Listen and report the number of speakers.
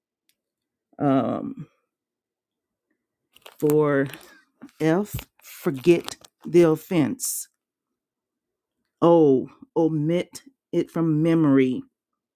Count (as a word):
one